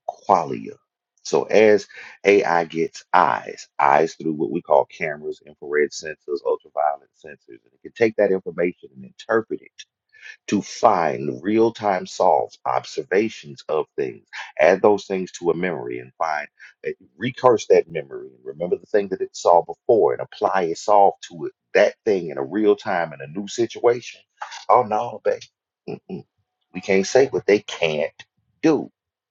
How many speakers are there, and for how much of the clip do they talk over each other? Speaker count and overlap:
one, no overlap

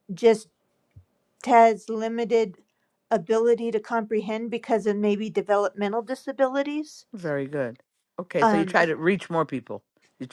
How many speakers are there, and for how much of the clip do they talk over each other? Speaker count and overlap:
two, about 4%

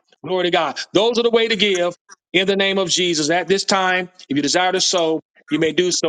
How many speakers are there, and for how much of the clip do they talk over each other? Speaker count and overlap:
one, no overlap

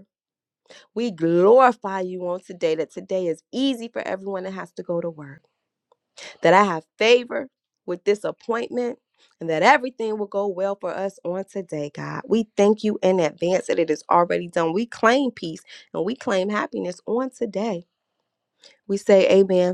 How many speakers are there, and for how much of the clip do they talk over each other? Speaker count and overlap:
one, no overlap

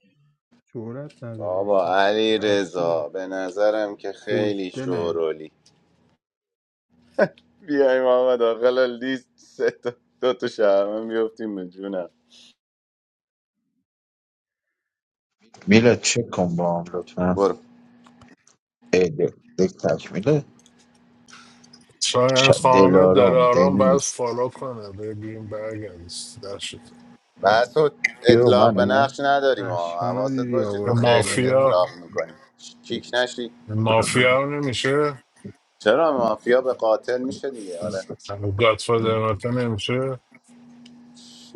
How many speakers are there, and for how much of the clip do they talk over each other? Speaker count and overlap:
four, about 17%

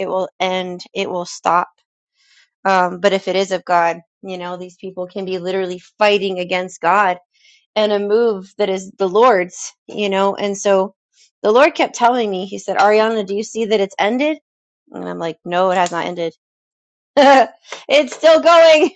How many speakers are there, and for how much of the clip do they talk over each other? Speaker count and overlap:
one, no overlap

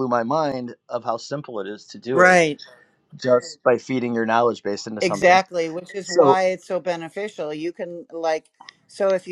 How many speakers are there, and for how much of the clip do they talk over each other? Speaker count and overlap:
two, about 10%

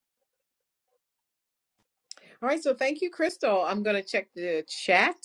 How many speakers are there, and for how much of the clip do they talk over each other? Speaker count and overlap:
one, no overlap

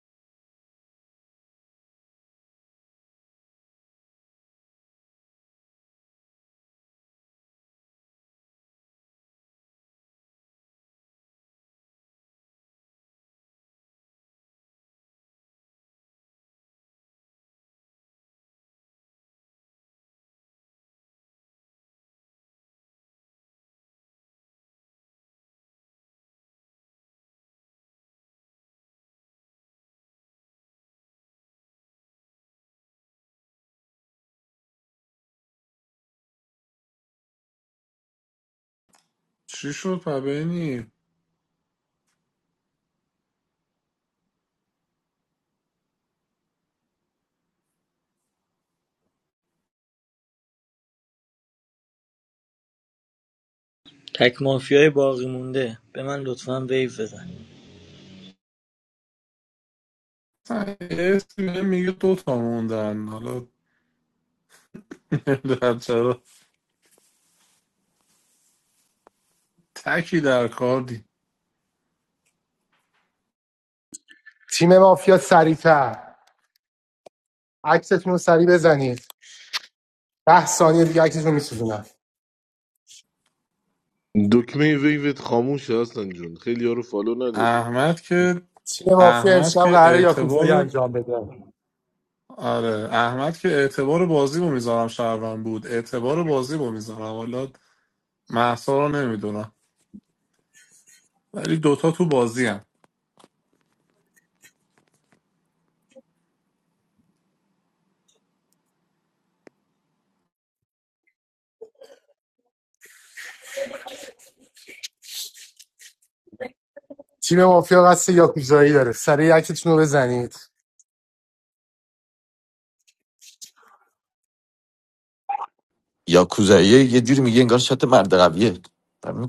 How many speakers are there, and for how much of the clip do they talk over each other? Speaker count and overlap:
five, about 2%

